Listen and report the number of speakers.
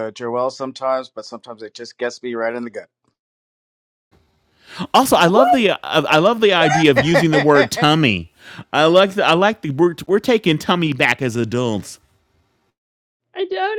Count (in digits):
3